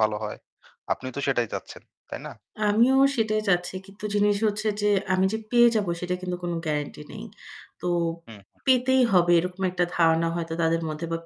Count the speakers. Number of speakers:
2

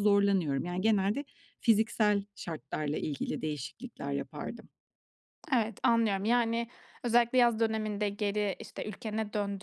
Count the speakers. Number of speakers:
2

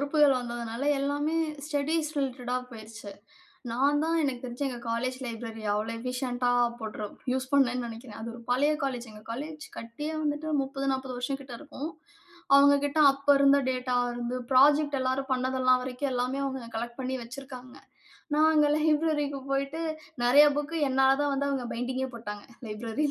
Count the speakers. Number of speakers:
1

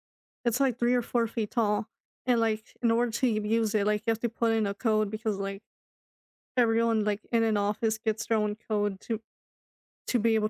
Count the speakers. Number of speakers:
1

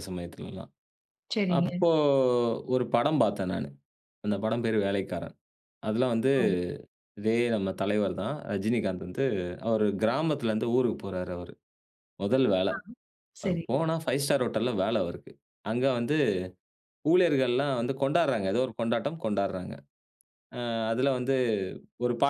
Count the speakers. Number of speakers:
2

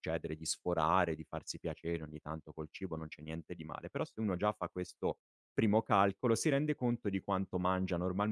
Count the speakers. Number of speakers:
1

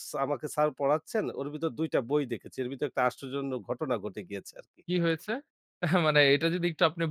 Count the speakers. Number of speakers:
2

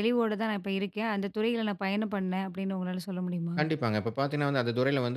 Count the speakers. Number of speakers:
2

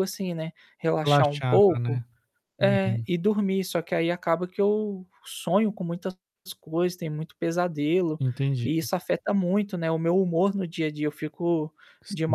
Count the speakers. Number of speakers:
2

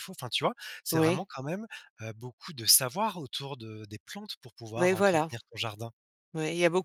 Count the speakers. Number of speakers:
2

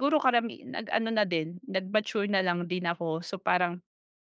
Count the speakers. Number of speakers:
1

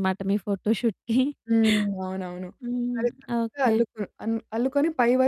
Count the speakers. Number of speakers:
2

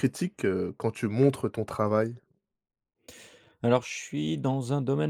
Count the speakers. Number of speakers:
2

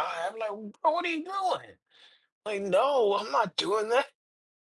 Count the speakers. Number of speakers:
1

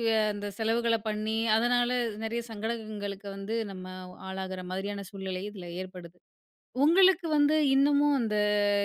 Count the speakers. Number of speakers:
1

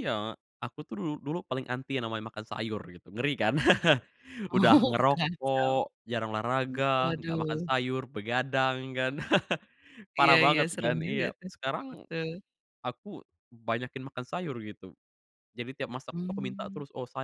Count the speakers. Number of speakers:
2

